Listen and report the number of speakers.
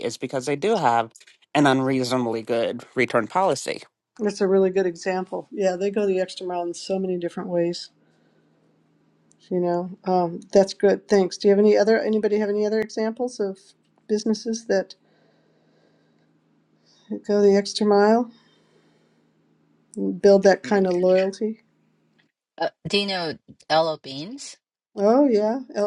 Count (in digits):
3